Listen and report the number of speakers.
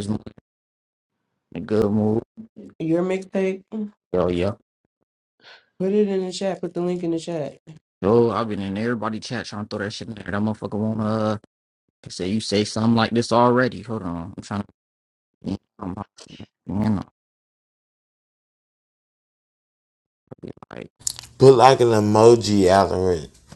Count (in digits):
3